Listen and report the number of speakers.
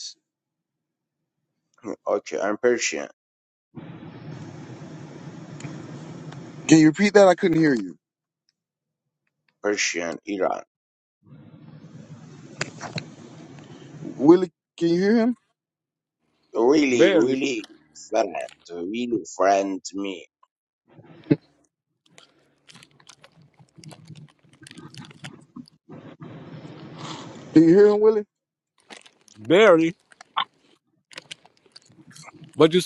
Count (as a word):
three